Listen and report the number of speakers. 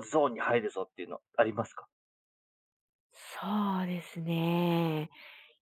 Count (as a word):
two